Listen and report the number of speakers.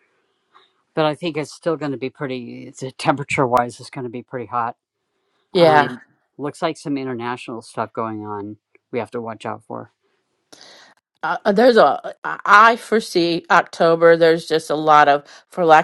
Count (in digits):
2